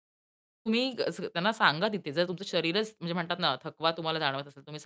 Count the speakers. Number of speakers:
one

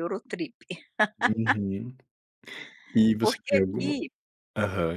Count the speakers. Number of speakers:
two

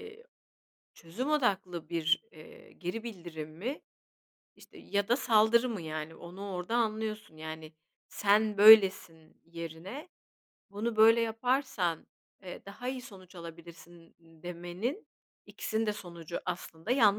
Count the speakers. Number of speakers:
one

